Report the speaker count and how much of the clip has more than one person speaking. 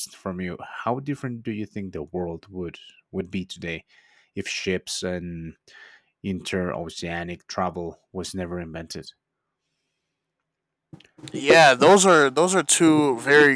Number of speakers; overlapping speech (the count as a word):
two, no overlap